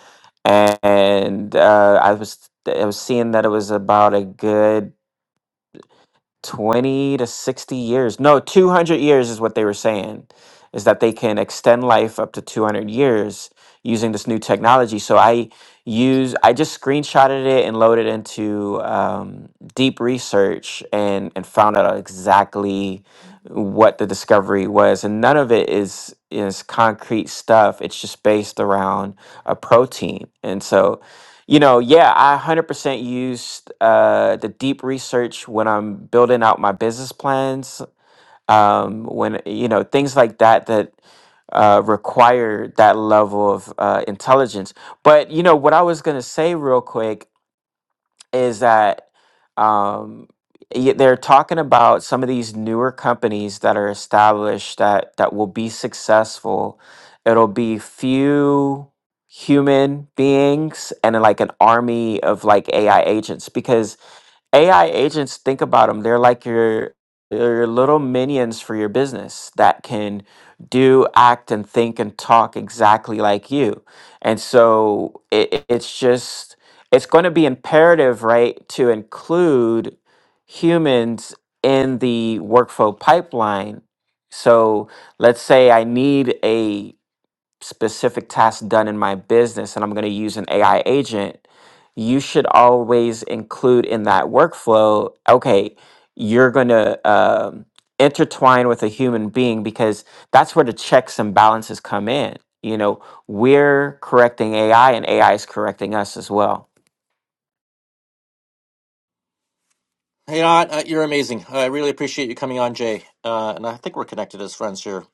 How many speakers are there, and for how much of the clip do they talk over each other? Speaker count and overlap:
two, no overlap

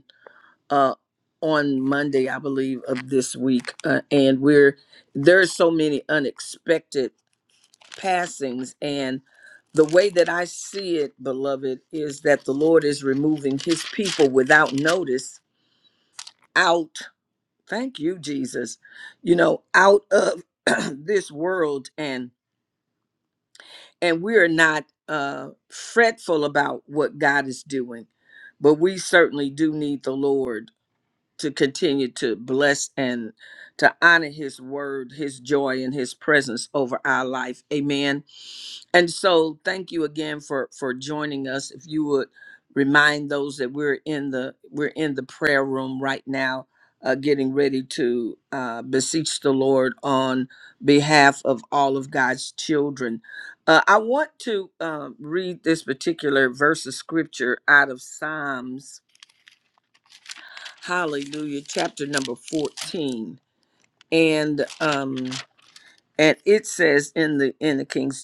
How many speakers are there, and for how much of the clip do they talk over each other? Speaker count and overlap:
one, no overlap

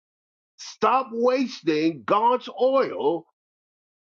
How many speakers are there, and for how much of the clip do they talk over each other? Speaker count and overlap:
one, no overlap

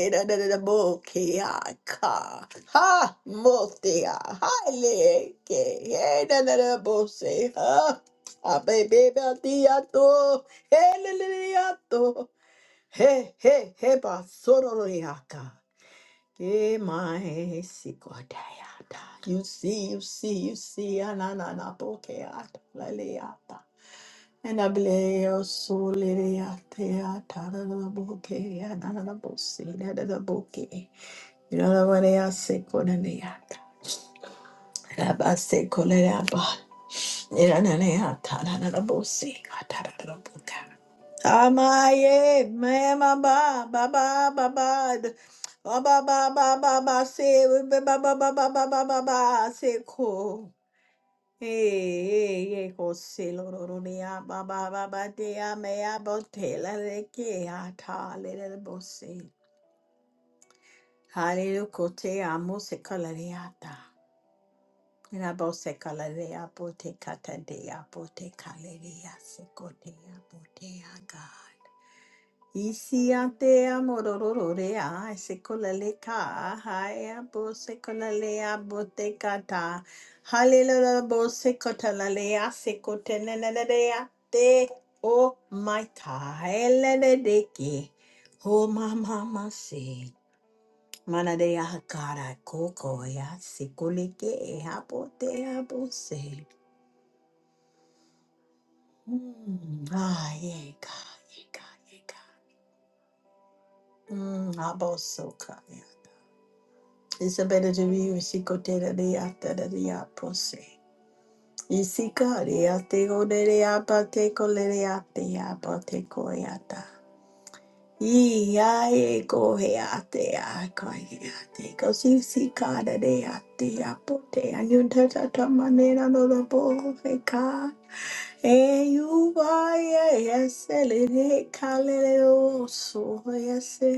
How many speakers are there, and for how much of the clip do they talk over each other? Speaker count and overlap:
one, no overlap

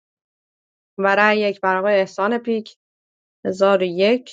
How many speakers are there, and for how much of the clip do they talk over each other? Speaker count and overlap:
one, no overlap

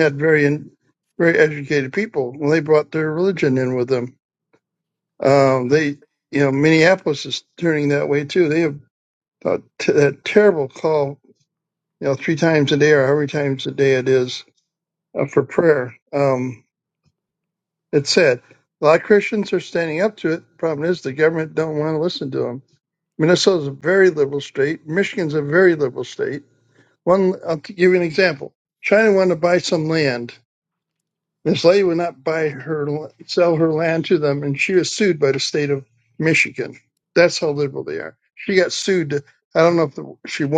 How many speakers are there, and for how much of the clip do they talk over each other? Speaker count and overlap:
one, no overlap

